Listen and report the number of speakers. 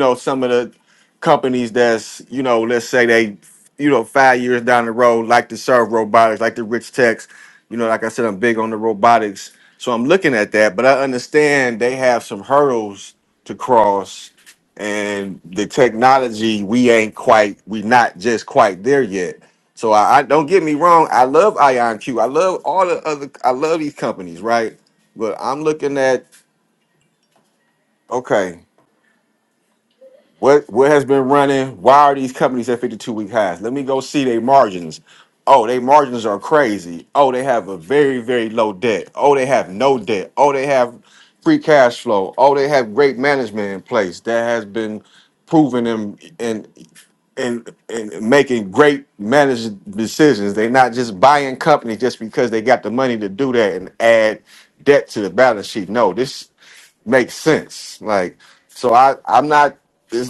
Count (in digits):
1